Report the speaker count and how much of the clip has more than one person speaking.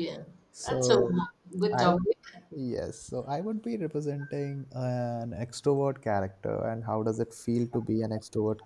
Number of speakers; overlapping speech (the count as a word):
two, about 8%